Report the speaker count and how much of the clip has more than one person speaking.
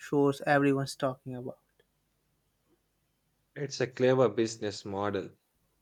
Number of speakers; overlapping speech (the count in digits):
2, no overlap